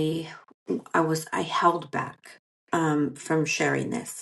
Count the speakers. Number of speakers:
one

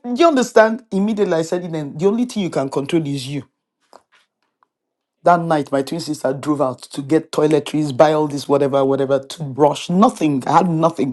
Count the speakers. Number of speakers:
one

